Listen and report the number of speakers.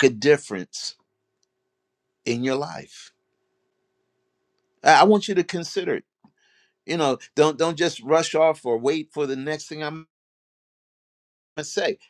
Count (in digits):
1